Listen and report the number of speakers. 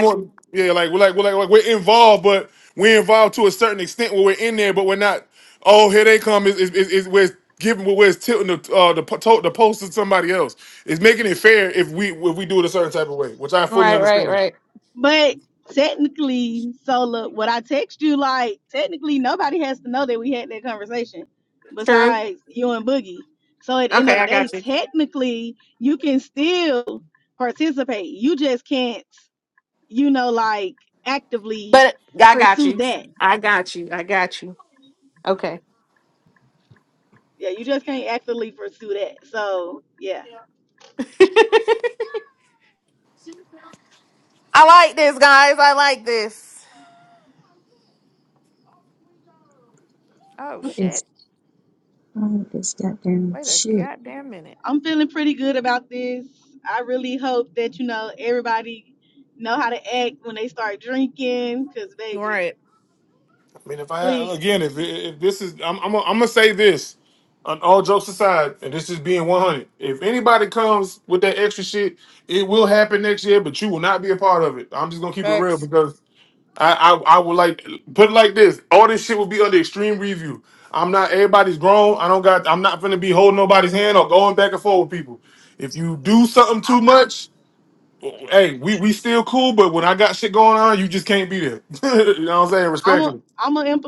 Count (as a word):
four